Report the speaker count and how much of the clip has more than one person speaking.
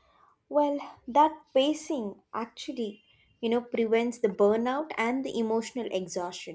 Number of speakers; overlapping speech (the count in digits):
1, no overlap